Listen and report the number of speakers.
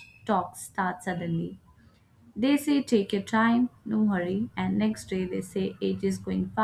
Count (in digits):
1